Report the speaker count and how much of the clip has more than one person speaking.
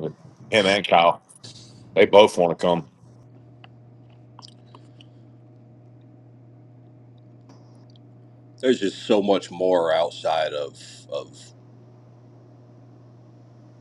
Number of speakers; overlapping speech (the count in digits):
2, no overlap